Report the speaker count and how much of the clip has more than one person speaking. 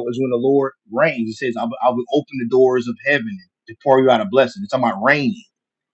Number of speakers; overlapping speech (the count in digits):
1, no overlap